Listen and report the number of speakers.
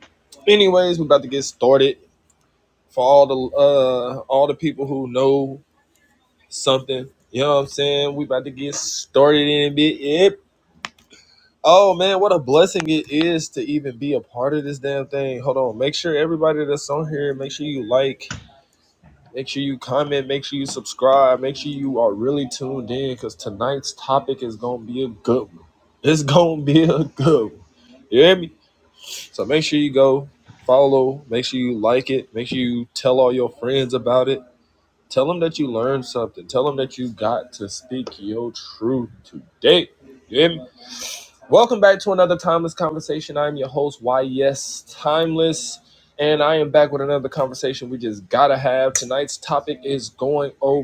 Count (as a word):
one